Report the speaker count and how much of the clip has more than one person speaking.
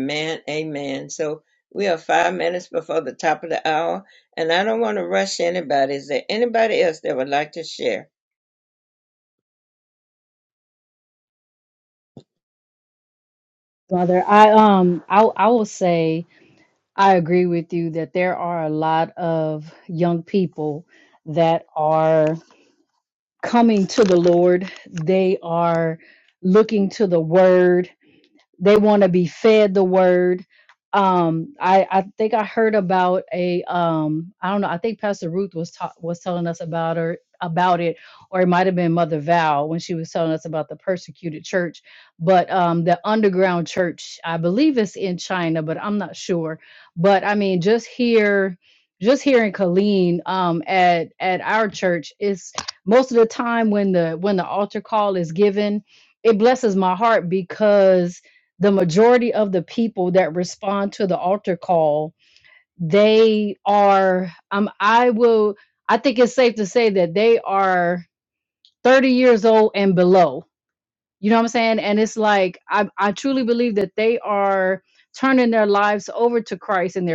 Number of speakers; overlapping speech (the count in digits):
2, no overlap